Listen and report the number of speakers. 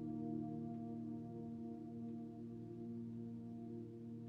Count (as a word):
zero